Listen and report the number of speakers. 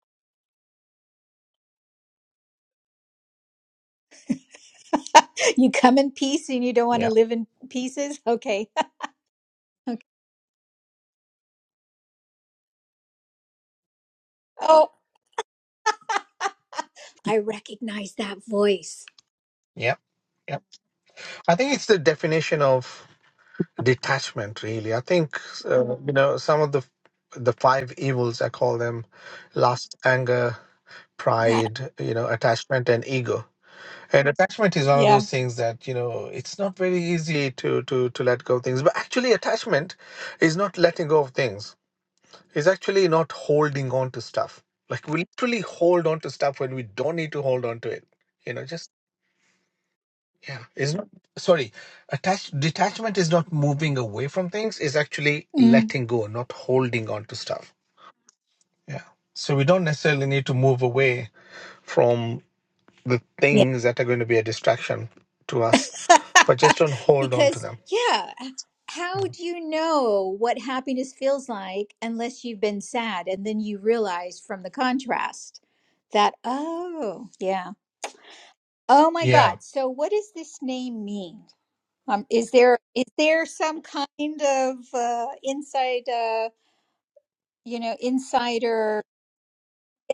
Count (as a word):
two